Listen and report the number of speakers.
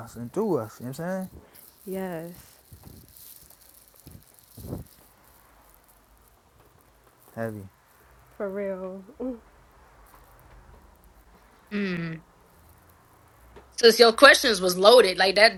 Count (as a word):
three